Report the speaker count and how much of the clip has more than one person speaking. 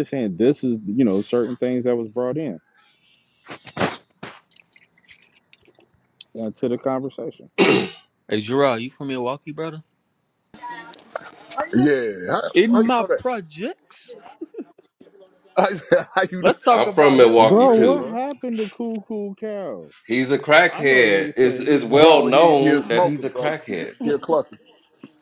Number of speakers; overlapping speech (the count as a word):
four, about 20%